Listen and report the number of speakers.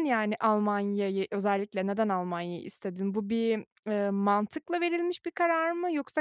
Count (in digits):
1